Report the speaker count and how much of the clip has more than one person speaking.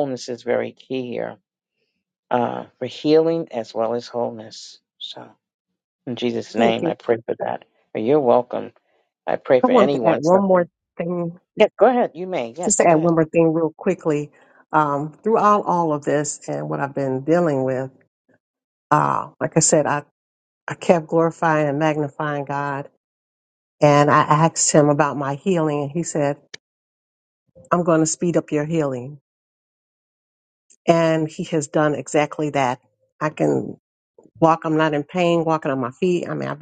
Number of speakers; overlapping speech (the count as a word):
two, about 5%